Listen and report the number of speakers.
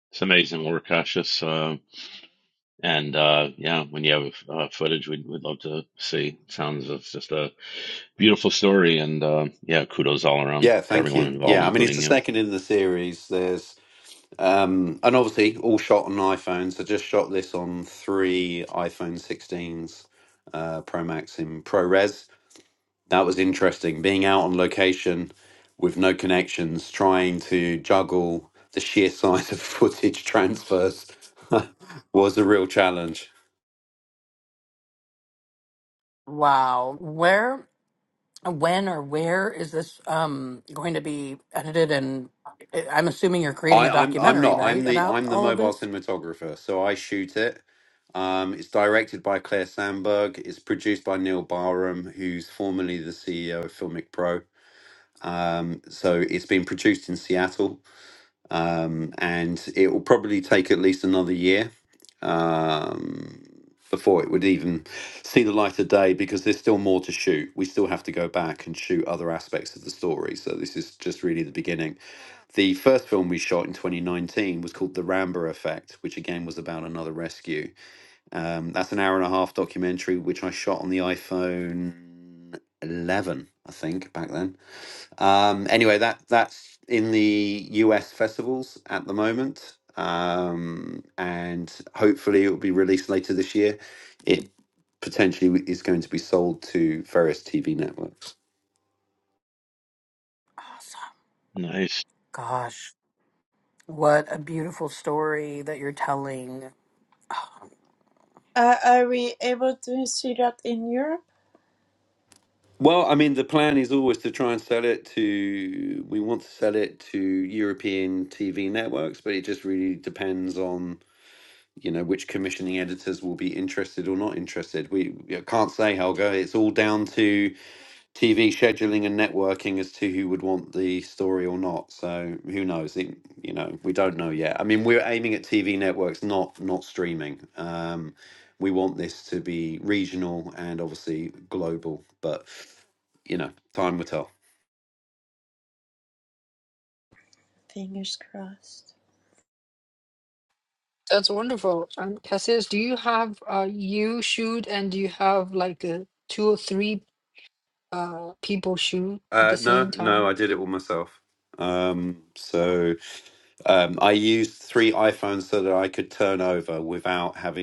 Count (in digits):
5